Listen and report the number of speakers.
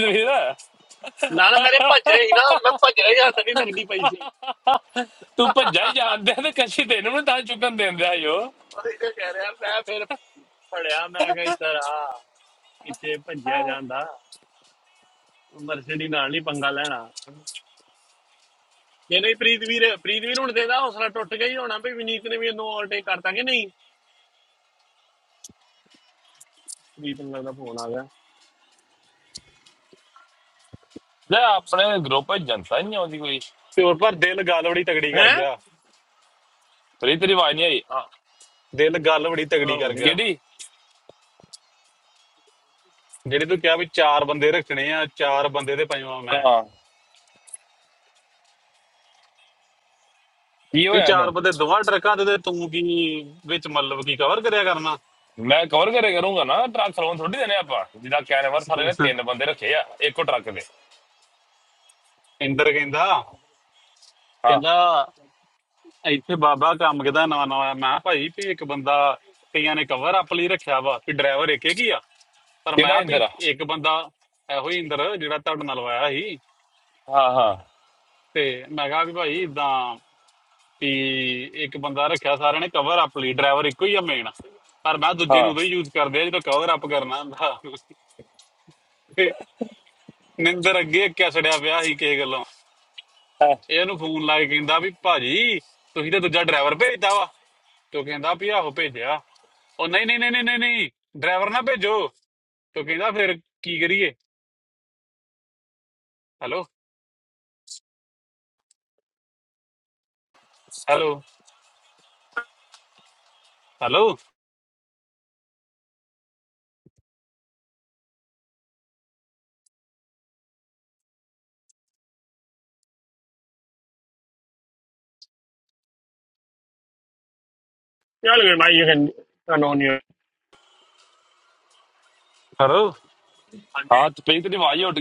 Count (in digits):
3